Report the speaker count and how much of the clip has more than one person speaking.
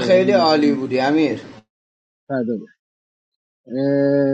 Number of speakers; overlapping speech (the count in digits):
2, about 18%